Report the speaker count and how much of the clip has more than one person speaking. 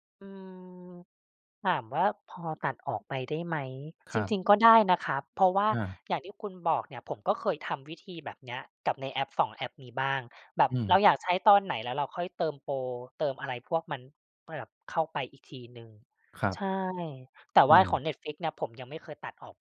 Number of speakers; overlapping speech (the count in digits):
2, about 4%